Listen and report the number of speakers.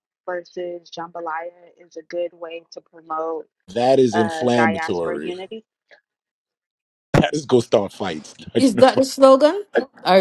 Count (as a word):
three